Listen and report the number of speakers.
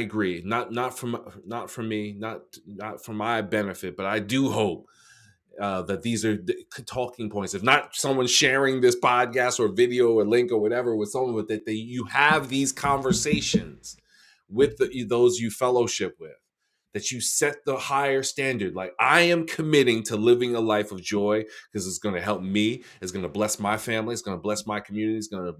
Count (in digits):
1